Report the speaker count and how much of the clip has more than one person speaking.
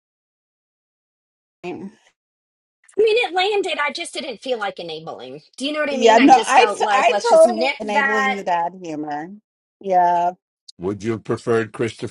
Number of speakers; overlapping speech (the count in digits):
3, about 18%